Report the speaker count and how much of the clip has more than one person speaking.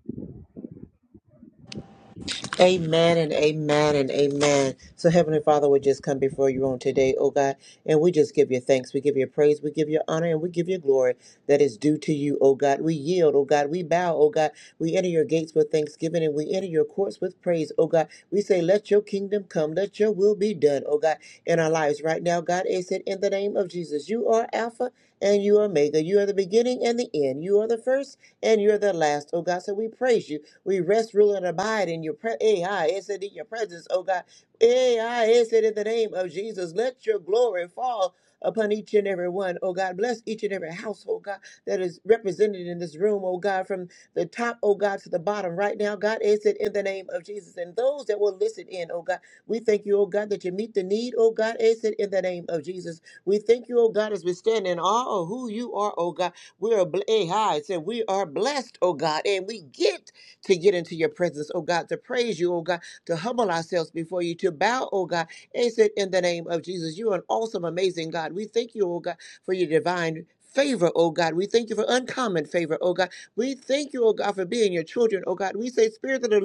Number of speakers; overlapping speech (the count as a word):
one, no overlap